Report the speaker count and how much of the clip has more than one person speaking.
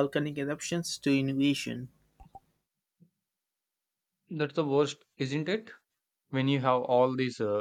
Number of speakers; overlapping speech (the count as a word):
two, no overlap